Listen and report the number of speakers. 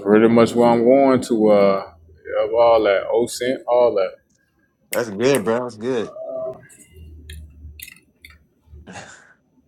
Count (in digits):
2